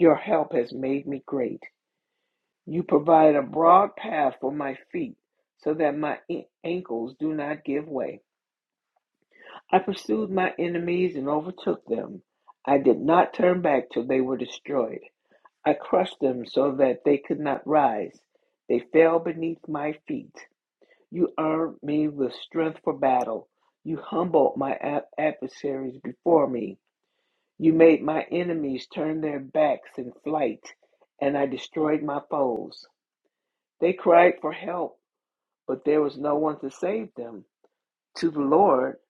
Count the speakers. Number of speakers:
1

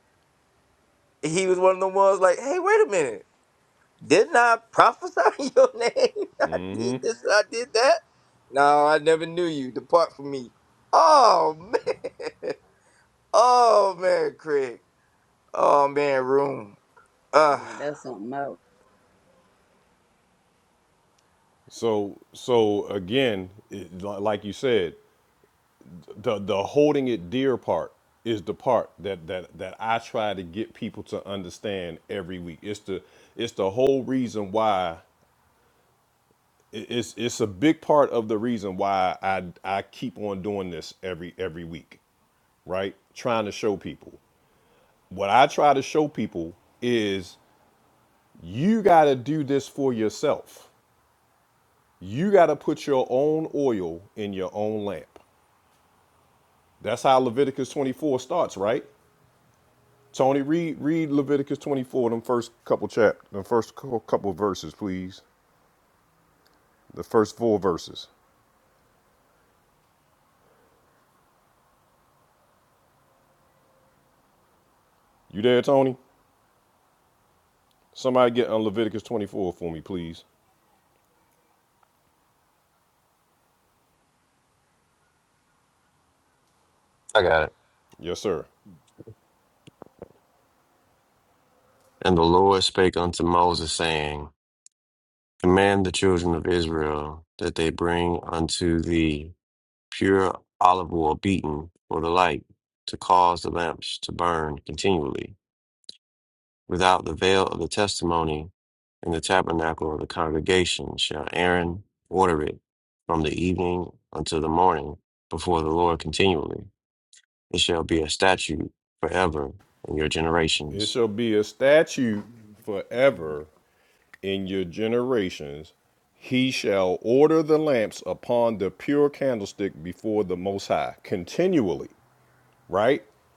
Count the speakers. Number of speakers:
4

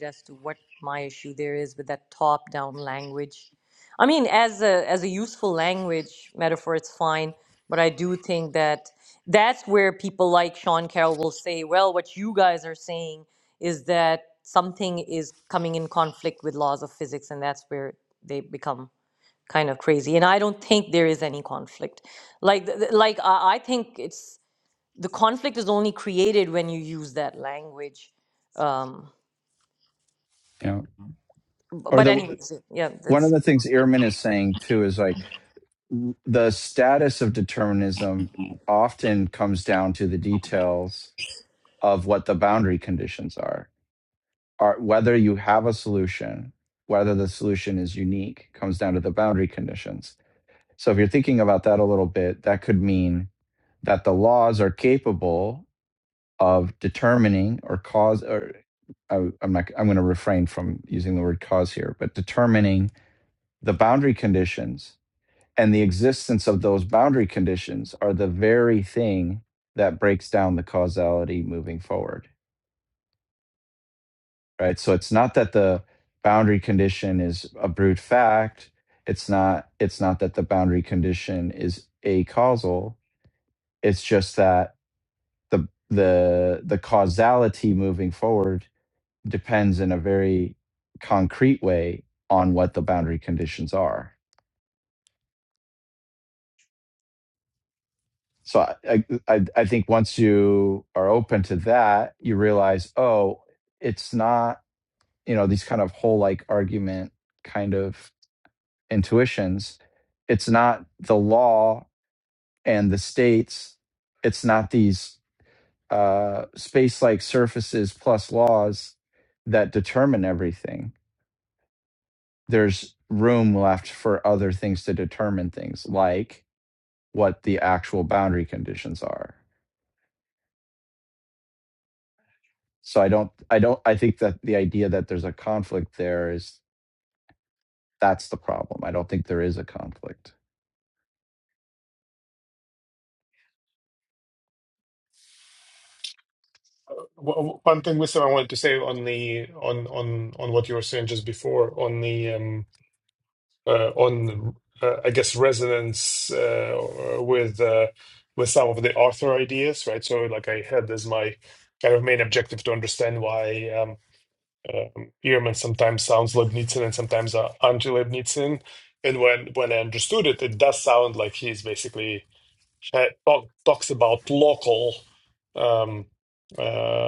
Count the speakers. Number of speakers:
3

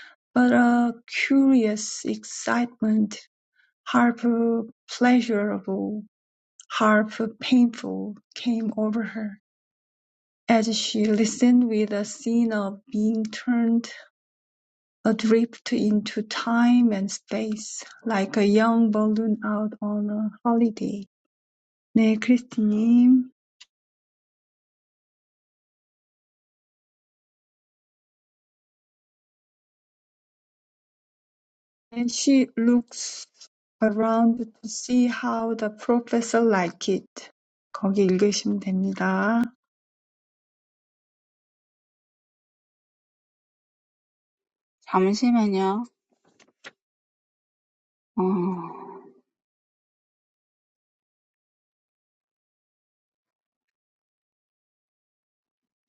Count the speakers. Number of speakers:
2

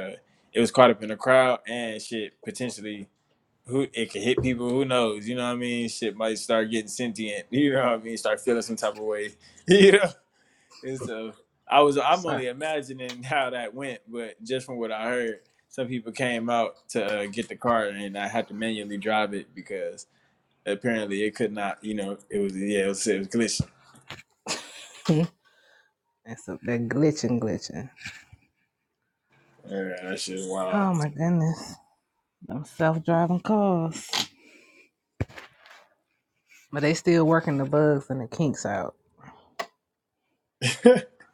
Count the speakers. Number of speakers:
2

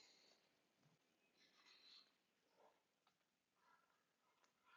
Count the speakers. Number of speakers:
0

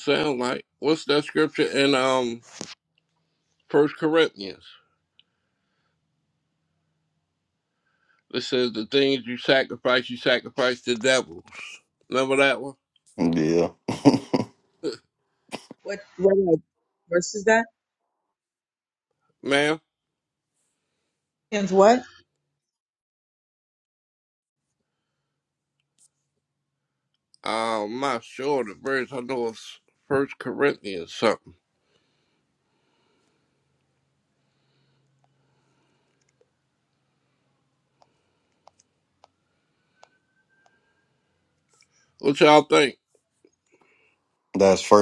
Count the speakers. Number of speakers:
3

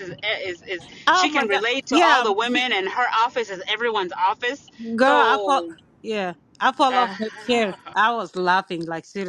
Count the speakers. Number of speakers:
2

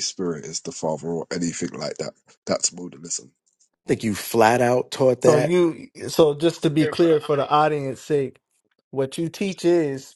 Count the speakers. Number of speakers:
3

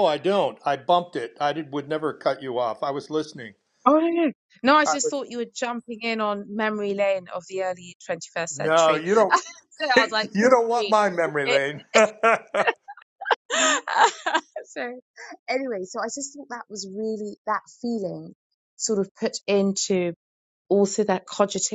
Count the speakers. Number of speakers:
2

